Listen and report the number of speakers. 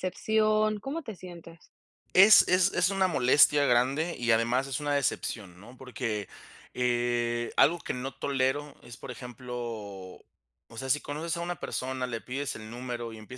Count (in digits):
2